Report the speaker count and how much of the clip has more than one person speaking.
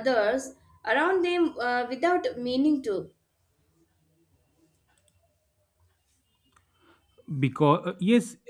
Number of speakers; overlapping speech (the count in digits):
2, no overlap